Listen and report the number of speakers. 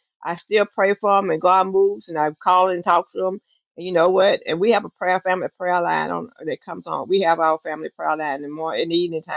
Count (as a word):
one